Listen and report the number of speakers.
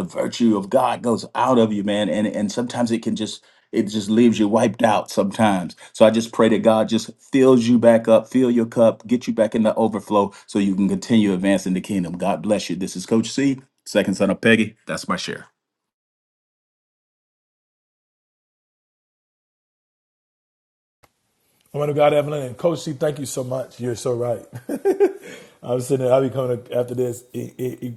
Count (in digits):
2